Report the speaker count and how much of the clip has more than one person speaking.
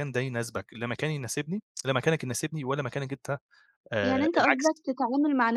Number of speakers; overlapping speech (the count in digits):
2, about 11%